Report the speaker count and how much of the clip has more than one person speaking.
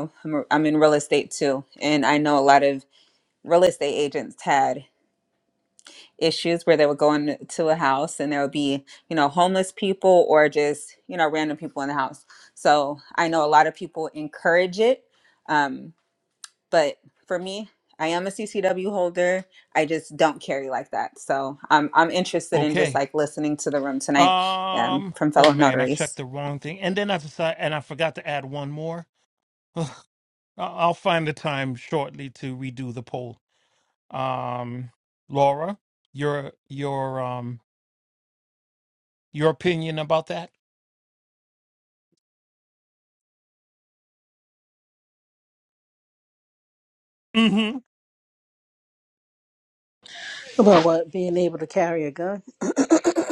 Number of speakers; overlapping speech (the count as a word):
three, about 3%